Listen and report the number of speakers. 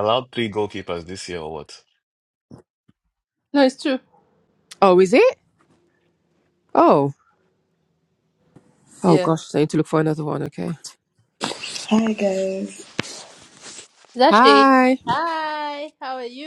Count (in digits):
4